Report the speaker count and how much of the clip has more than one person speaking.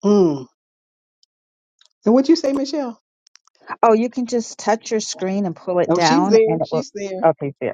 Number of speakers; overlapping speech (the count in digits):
2, about 13%